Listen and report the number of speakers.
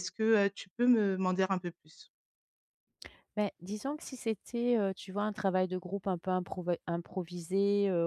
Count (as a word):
two